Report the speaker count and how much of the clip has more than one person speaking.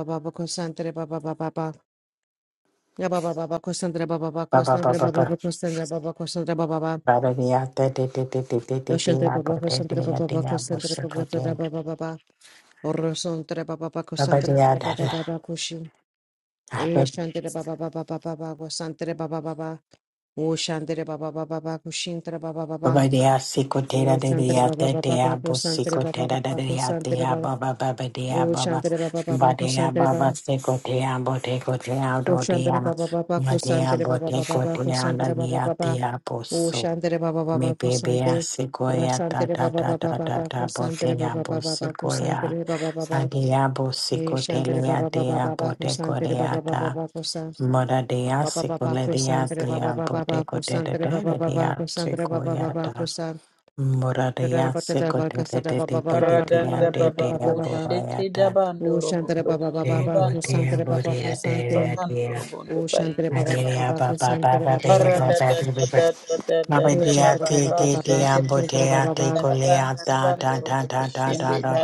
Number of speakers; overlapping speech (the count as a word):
three, about 58%